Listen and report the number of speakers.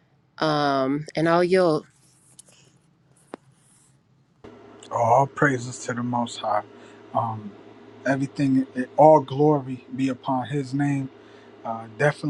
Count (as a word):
two